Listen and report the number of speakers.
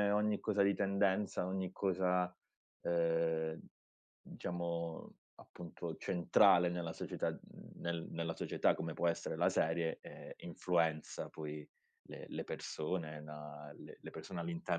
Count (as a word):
one